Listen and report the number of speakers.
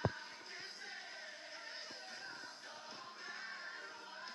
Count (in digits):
0